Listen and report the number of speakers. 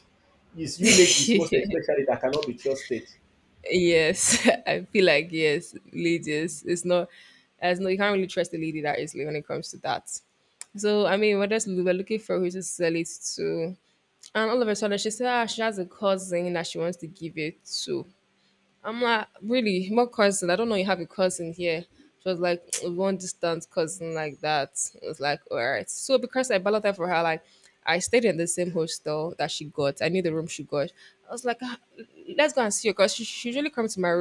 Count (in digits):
2